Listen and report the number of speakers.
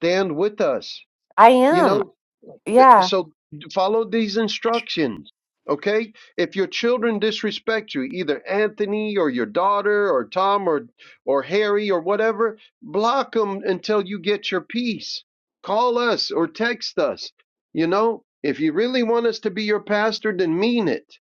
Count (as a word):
two